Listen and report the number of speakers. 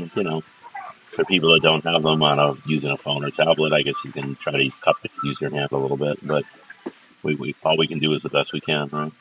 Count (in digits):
1